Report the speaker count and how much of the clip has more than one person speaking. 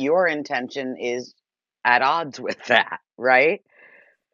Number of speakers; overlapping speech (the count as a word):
one, no overlap